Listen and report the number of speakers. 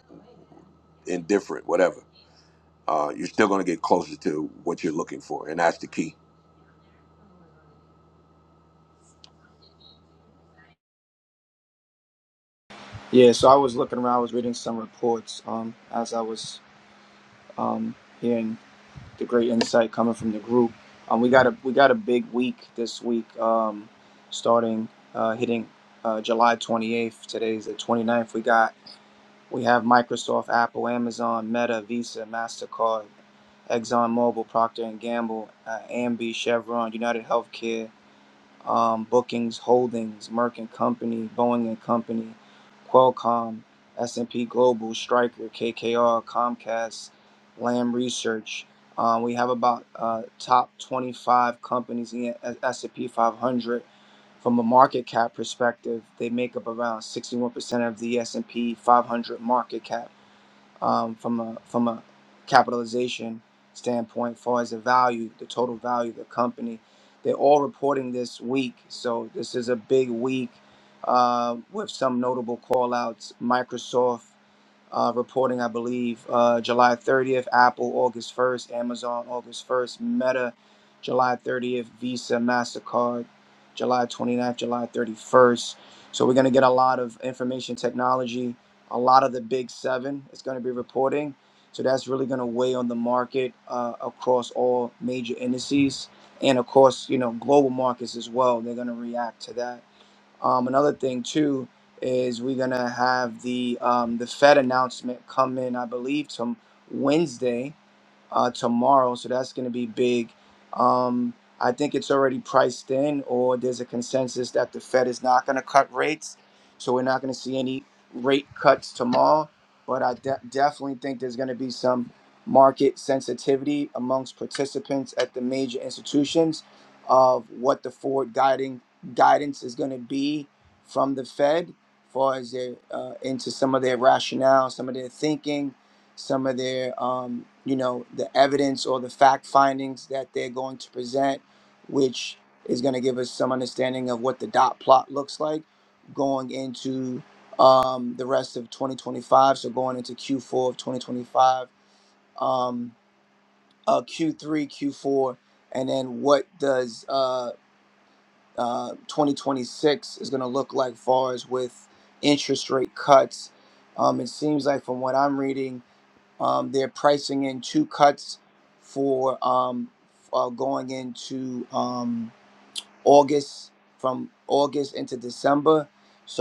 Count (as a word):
two